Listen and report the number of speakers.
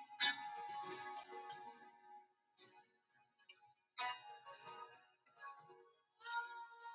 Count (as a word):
zero